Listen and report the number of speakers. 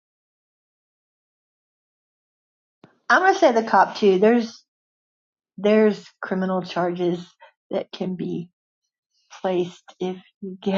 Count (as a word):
one